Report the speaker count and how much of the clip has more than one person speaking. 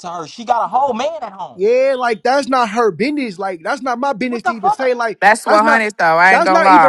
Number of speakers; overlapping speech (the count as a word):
three, about 26%